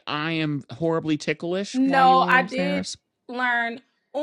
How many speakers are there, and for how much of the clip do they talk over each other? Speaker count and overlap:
two, about 26%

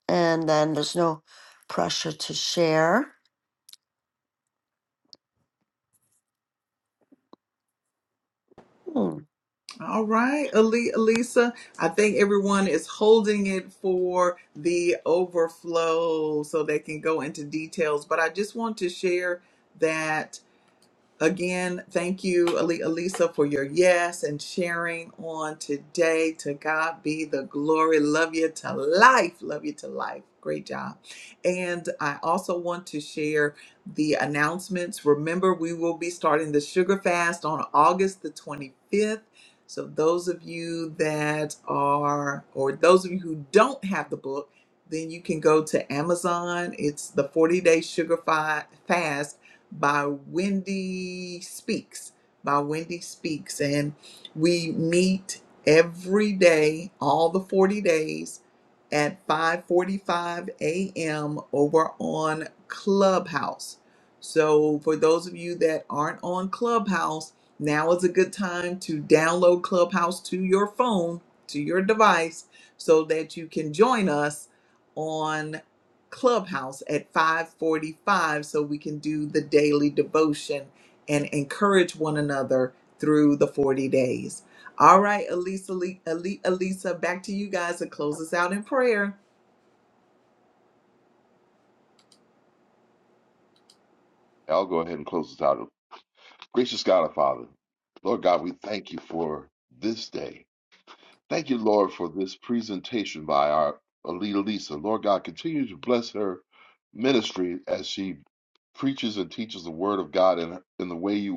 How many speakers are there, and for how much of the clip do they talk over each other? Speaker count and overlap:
three, no overlap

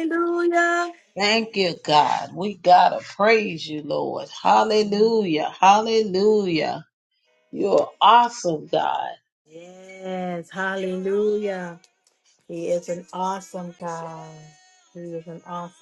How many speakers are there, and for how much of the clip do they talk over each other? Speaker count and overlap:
two, no overlap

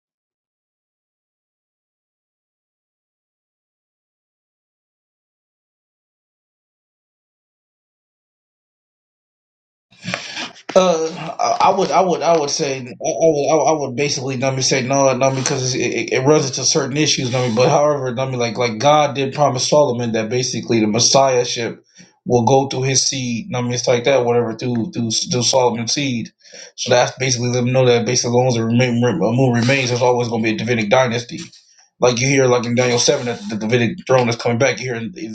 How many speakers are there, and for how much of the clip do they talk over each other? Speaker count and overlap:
one, no overlap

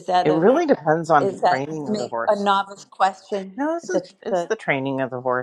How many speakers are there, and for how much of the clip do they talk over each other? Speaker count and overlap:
two, about 39%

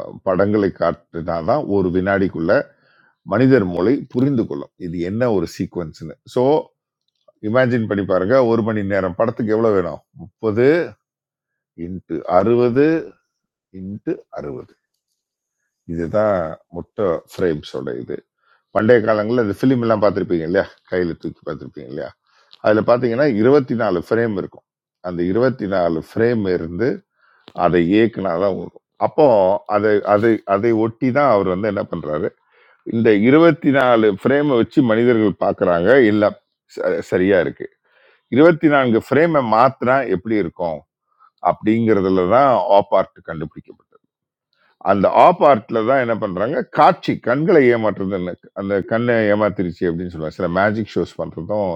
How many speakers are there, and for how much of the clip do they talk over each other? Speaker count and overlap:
one, no overlap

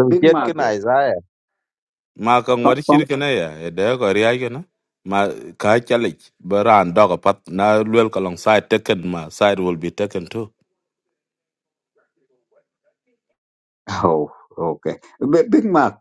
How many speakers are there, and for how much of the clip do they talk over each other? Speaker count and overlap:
three, about 7%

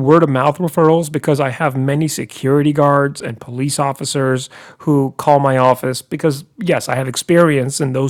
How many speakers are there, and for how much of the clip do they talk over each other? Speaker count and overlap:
one, no overlap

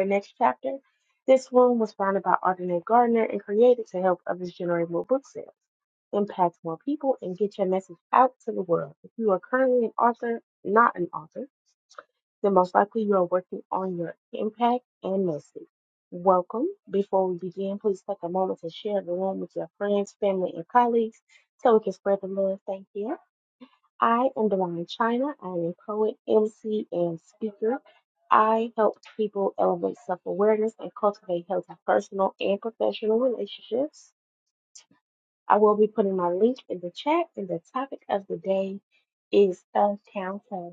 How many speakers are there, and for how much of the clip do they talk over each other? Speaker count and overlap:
one, no overlap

